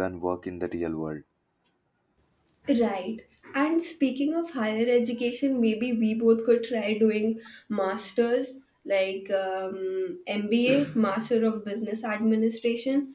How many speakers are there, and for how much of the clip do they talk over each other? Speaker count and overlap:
two, no overlap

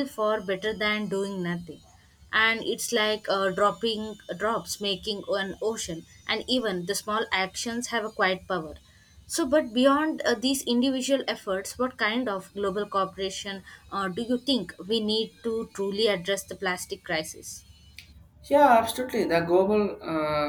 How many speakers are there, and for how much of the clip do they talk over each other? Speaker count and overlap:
two, no overlap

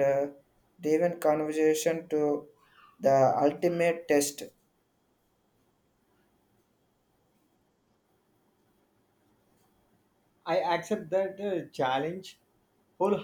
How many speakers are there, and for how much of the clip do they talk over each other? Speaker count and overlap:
two, no overlap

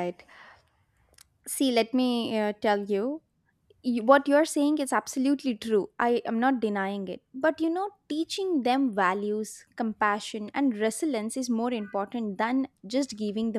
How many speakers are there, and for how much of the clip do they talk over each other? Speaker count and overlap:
one, no overlap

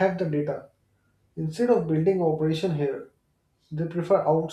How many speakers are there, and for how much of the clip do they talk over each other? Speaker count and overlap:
one, no overlap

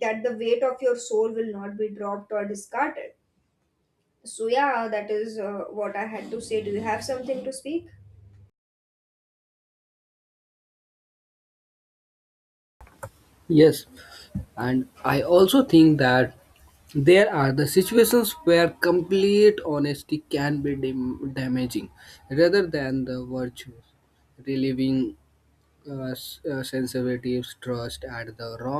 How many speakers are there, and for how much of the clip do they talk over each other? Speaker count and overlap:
two, no overlap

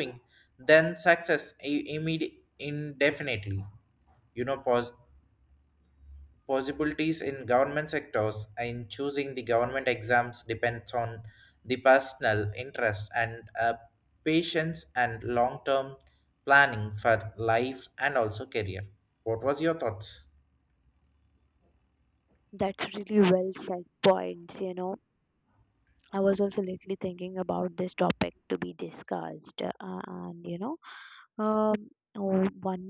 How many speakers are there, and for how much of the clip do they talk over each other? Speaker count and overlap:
two, no overlap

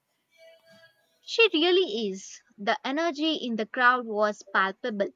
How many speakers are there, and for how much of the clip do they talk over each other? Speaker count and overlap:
one, no overlap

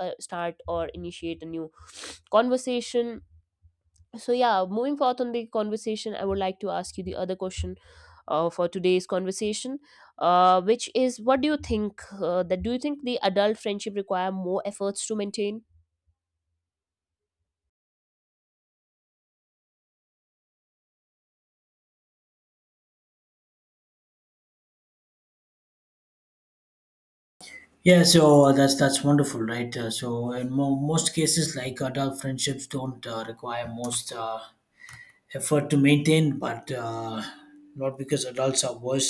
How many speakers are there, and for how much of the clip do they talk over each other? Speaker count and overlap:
two, no overlap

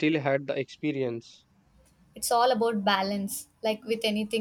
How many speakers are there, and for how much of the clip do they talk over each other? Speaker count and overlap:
two, no overlap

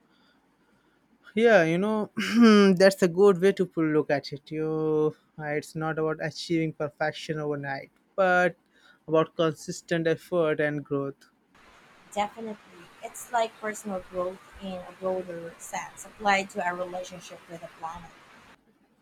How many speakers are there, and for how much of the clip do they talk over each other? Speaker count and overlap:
two, no overlap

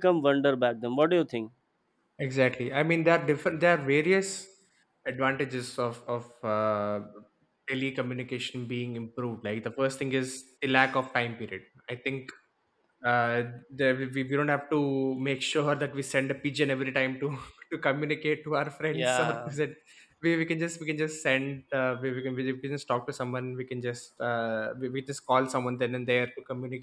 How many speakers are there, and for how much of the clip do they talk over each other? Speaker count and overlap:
two, about 2%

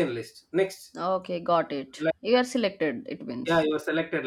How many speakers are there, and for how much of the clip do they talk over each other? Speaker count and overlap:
two, about 3%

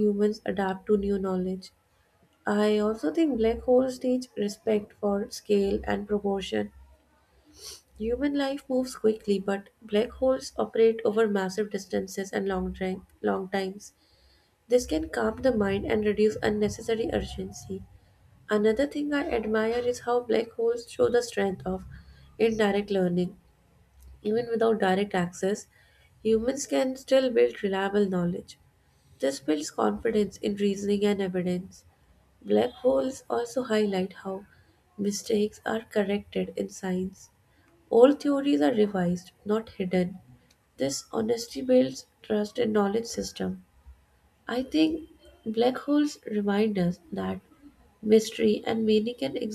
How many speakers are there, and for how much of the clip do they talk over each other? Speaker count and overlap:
one, no overlap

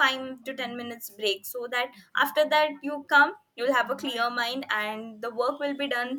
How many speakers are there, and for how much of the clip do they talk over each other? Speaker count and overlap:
one, no overlap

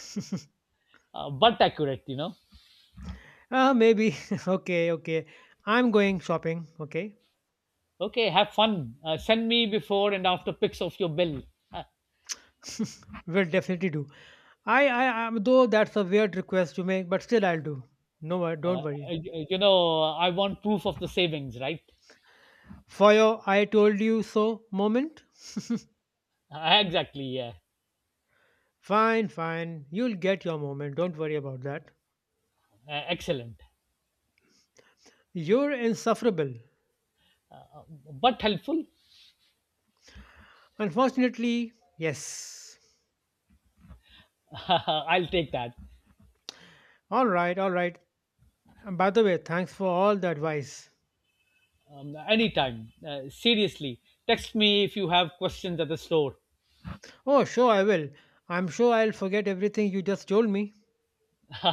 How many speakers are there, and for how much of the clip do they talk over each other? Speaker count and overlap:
two, about 1%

